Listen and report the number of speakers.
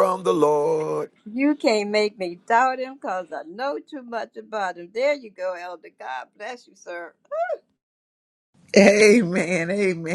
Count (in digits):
3